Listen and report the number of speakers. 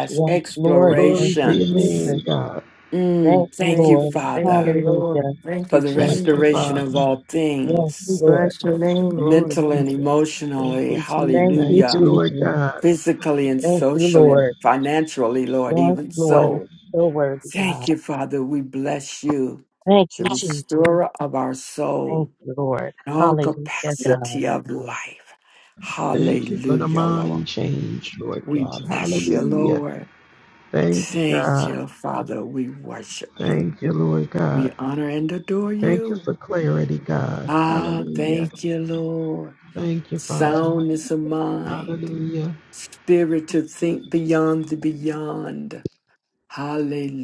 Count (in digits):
4